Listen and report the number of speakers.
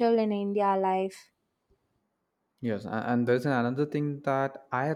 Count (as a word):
two